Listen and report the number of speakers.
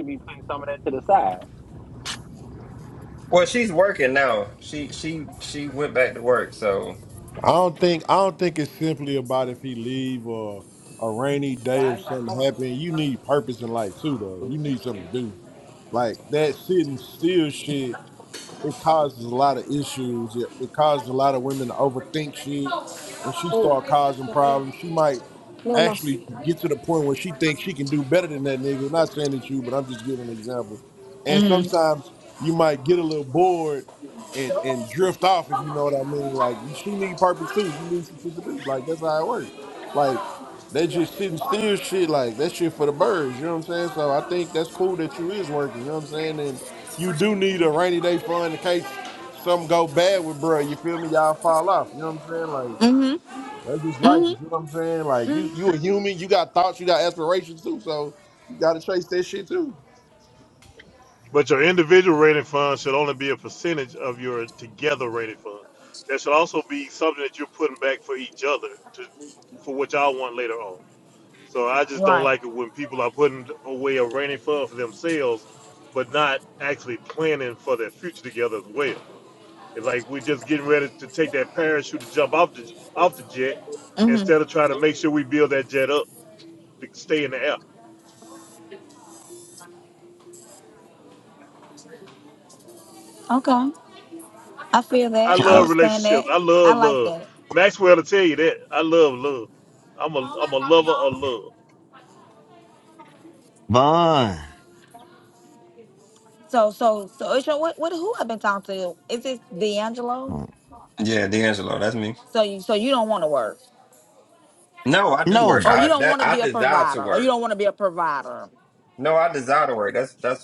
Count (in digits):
6